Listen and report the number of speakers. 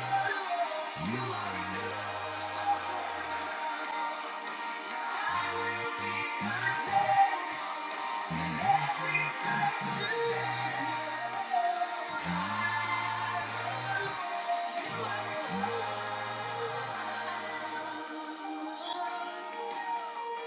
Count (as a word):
zero